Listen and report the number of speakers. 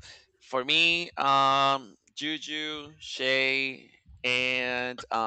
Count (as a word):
one